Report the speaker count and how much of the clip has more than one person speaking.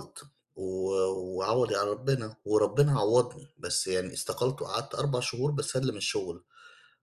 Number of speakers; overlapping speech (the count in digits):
1, no overlap